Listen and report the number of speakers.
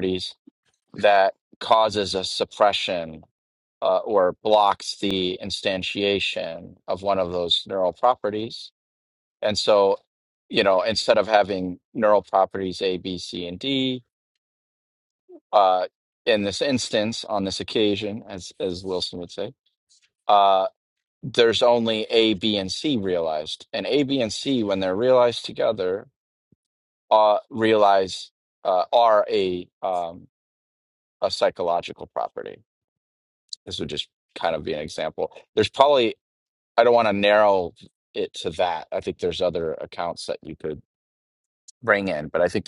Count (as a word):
one